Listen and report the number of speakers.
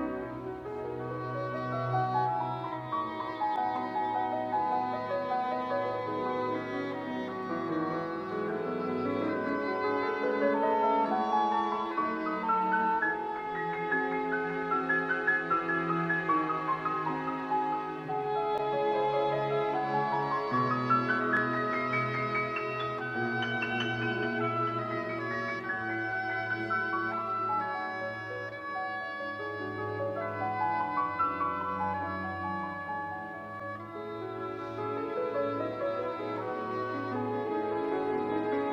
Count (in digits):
0